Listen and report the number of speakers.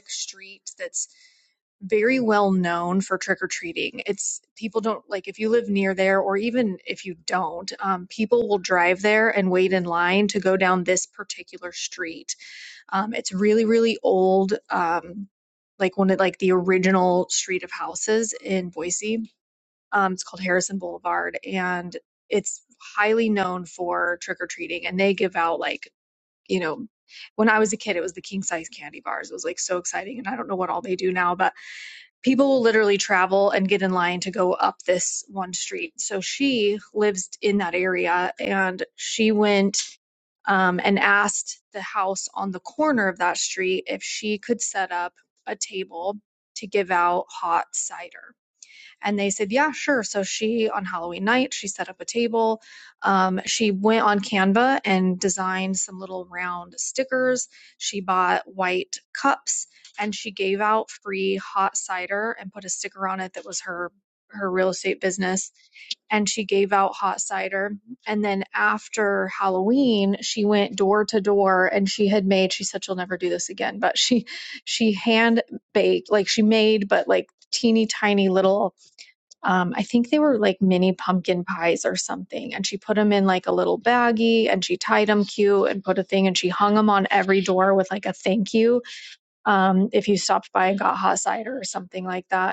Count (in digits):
1